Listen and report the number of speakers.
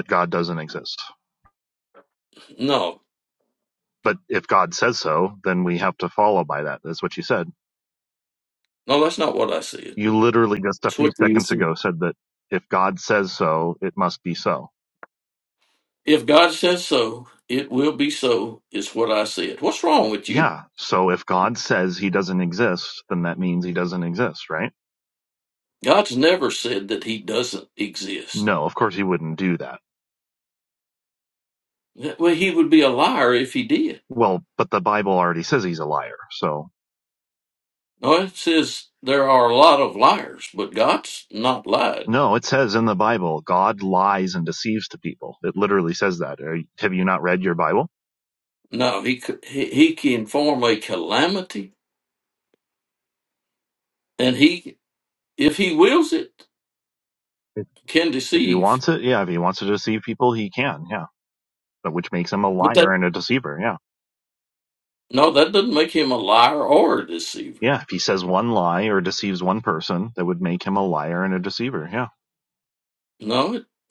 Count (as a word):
two